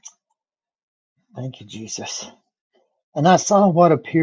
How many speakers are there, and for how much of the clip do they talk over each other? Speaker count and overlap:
1, no overlap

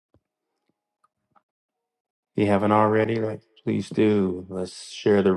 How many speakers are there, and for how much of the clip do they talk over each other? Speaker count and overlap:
1, no overlap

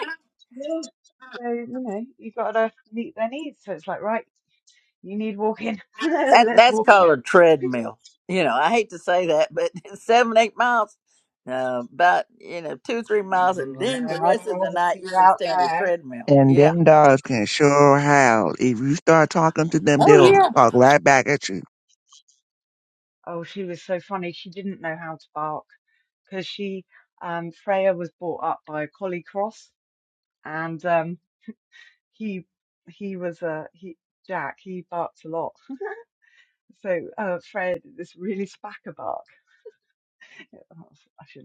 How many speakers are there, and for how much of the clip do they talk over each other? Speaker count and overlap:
3, about 10%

